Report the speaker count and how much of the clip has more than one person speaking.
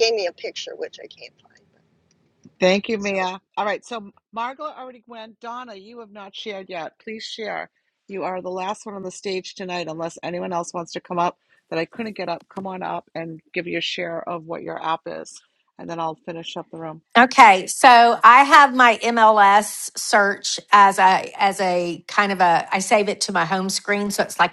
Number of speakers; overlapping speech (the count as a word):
three, under 1%